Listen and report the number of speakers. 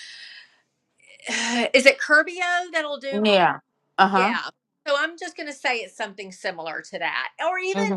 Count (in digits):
2